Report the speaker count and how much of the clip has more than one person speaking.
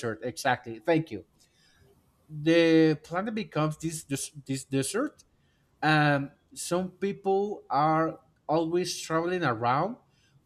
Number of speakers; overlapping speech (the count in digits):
1, no overlap